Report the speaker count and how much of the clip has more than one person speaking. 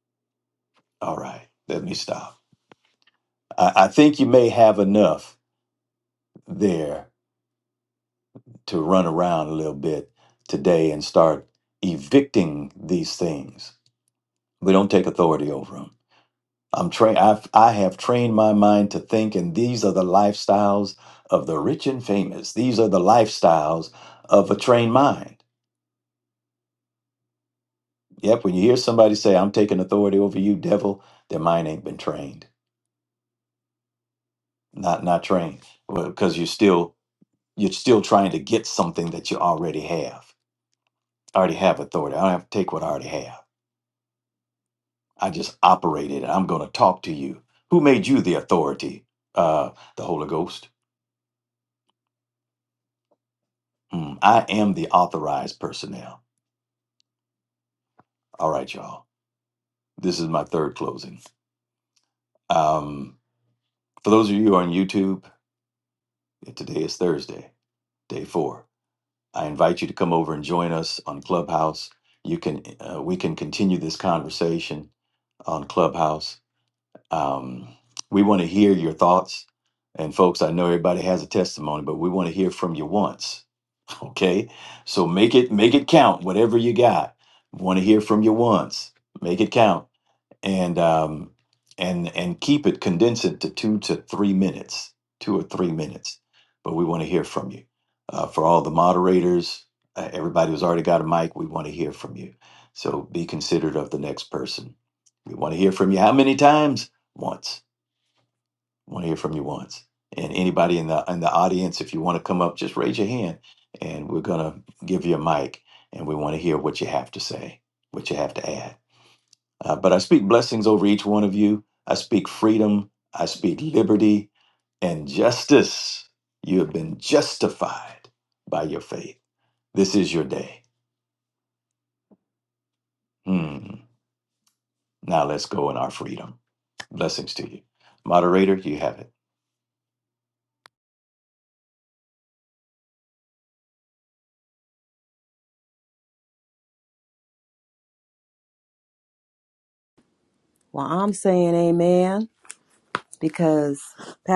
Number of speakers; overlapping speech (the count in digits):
2, no overlap